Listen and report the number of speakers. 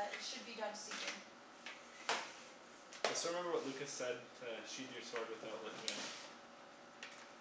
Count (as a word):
two